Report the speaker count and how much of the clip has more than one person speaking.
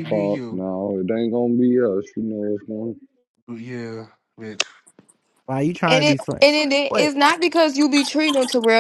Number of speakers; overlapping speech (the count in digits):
4, about 17%